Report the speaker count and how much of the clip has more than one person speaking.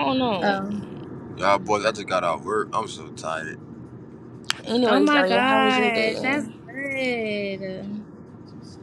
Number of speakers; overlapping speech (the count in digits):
3, about 23%